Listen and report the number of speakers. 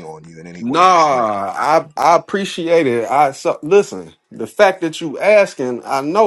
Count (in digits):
2